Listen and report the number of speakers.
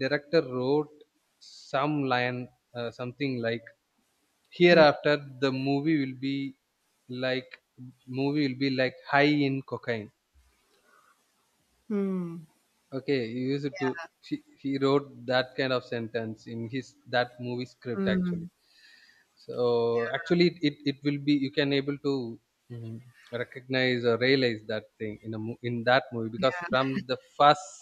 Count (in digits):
2